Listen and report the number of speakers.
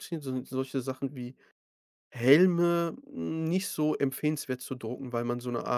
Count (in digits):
1